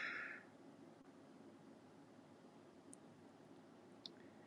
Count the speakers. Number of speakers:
0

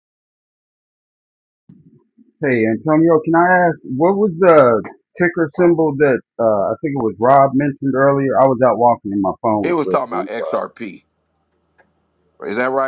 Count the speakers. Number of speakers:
2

